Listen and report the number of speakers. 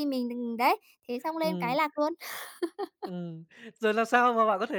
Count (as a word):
two